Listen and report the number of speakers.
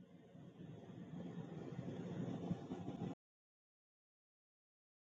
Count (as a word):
zero